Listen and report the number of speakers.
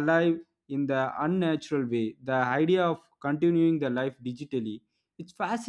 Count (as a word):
one